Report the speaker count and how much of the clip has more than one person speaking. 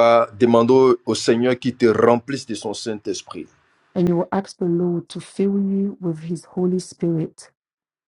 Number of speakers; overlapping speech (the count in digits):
2, no overlap